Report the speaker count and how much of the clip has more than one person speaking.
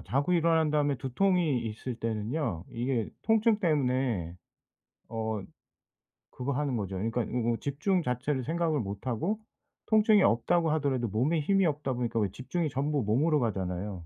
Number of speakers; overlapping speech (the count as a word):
one, no overlap